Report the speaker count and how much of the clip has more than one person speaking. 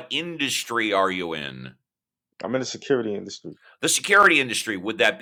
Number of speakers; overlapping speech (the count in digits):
2, no overlap